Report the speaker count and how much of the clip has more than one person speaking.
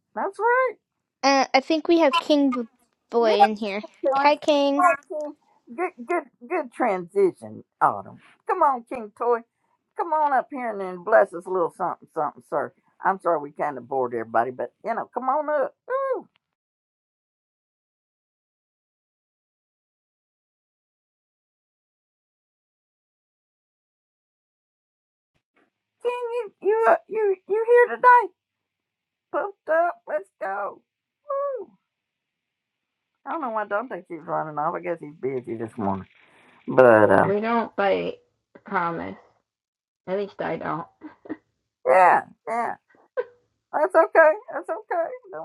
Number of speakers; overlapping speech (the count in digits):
3, about 1%